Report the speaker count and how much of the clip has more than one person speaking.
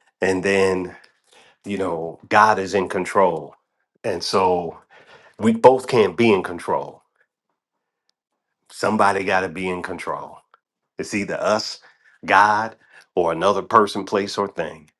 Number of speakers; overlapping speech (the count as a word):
one, no overlap